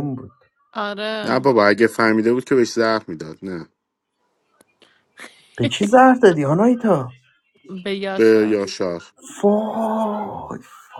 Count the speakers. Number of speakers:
3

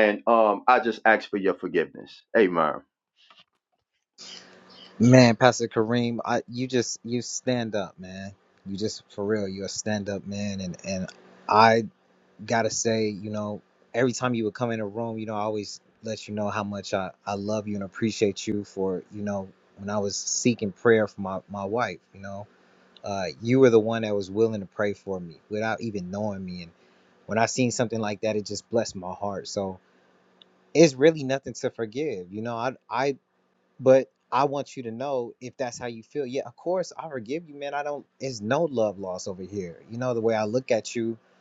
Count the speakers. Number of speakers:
2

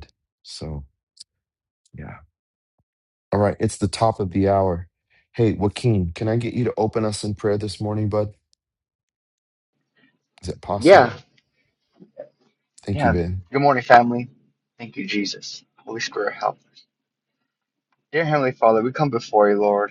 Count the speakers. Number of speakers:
2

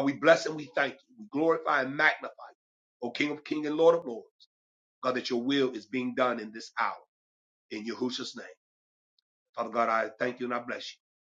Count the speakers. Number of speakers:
1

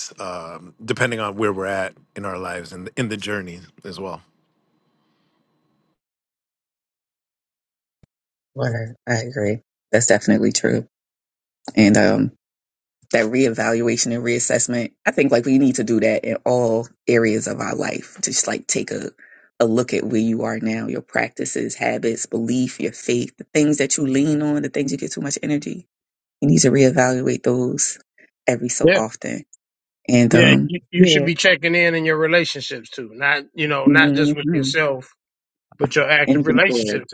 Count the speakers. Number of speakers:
3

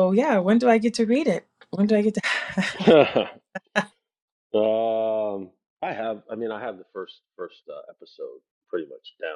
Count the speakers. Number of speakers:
2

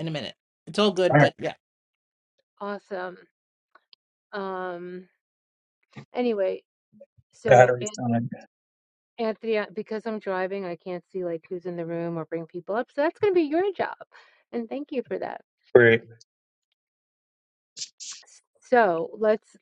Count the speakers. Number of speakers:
3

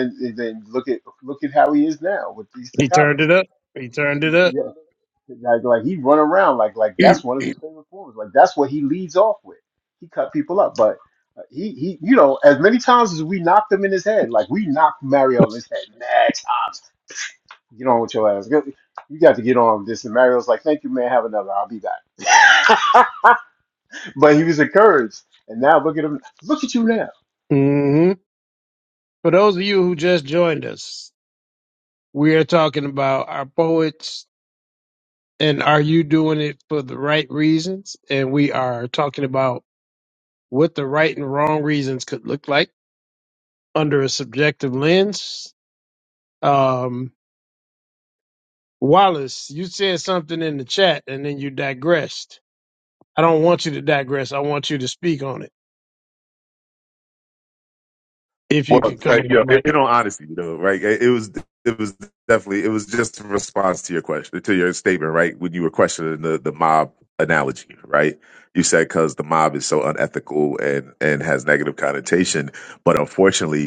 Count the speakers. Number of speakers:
3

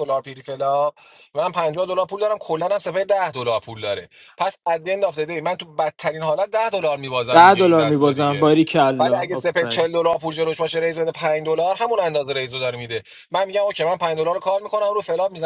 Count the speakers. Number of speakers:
2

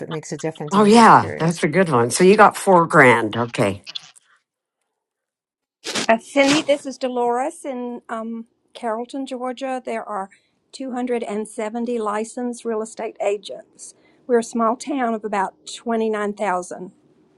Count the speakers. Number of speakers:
3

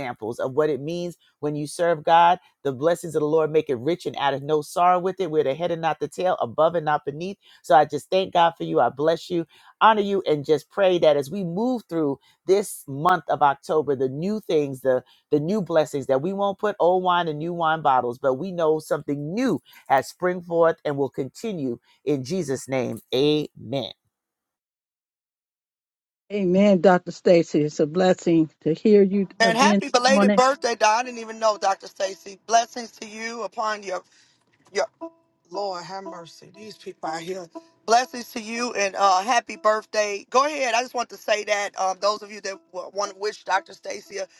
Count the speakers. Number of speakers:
3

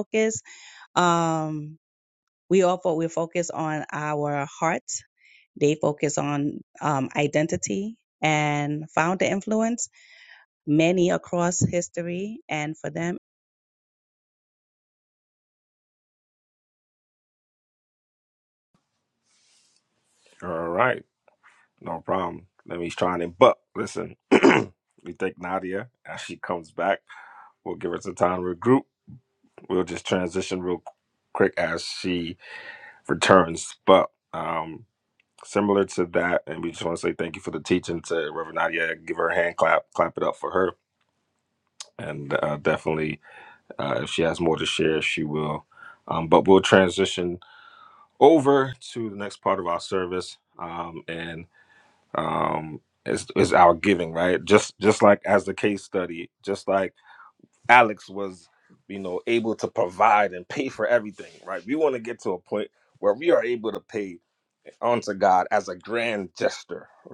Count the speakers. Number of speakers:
2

